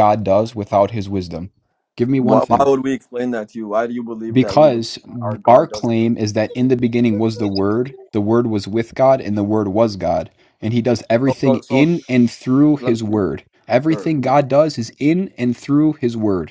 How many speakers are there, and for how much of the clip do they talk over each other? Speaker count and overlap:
two, about 14%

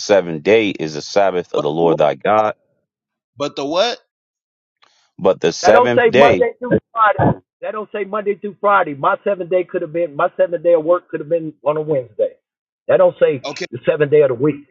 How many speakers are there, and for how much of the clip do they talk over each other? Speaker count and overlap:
three, about 8%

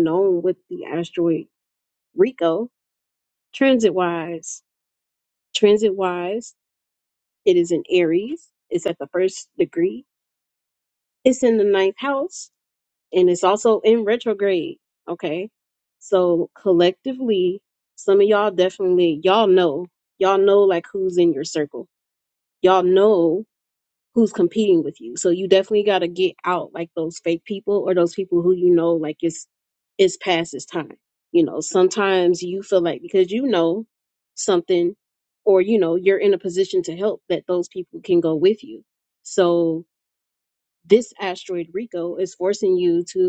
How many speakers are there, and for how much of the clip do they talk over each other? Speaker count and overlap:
one, no overlap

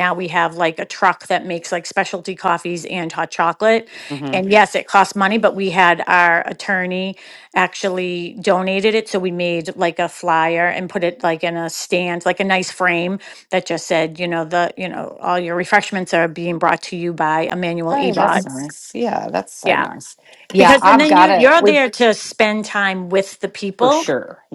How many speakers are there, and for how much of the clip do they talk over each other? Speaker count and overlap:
two, about 10%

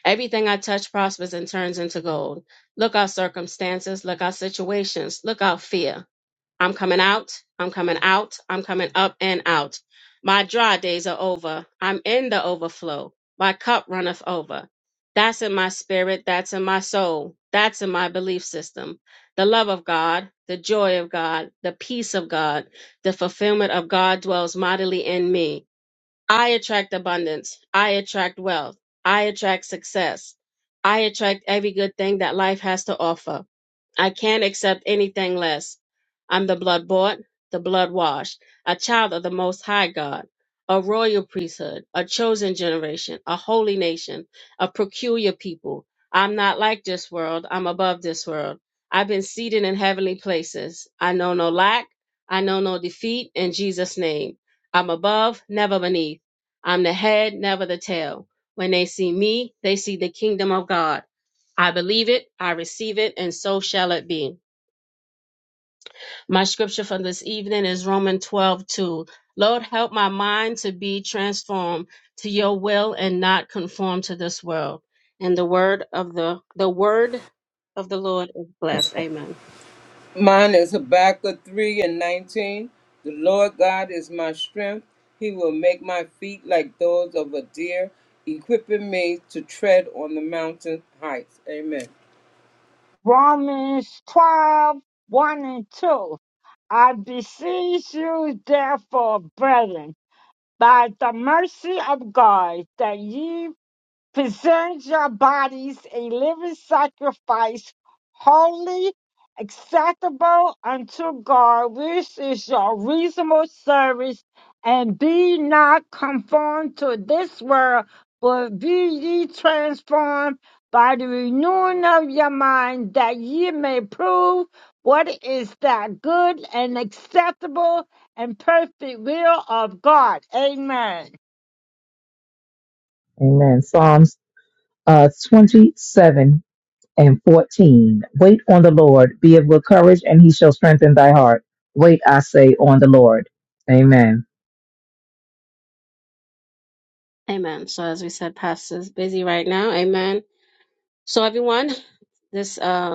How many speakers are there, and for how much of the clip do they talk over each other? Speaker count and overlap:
four, no overlap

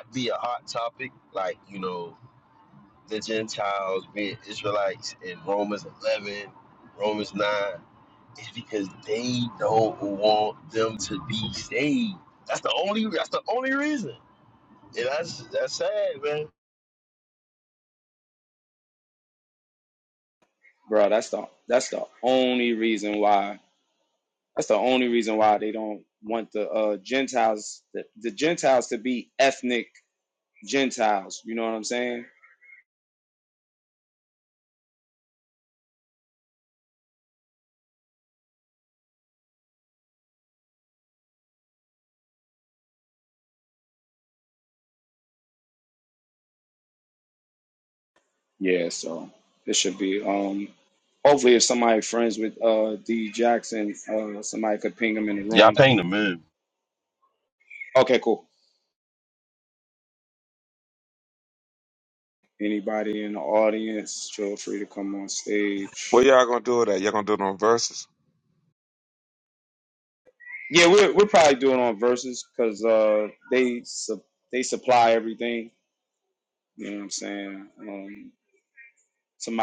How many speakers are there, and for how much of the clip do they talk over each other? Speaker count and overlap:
three, about 1%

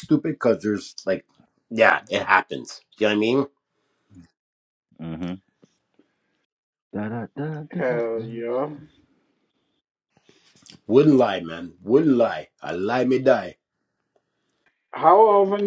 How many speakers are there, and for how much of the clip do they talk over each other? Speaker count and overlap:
three, about 3%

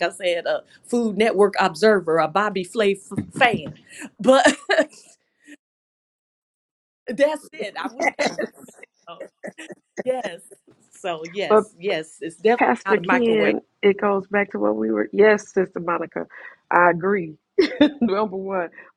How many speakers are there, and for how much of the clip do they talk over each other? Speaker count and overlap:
two, about 6%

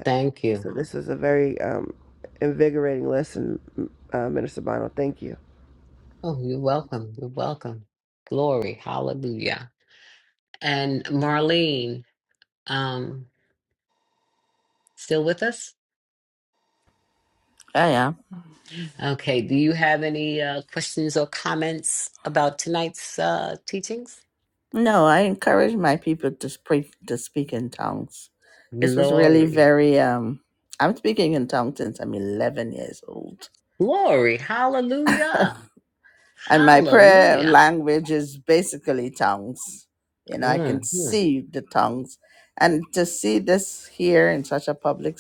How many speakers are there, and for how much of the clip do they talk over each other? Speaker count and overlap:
three, about 5%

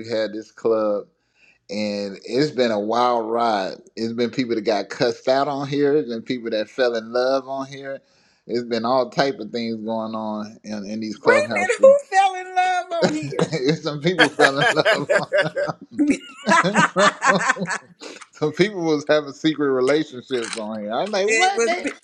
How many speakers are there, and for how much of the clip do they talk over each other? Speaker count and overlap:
two, about 6%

